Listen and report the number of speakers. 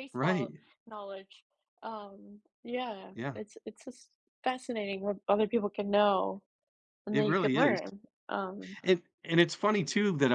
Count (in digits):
2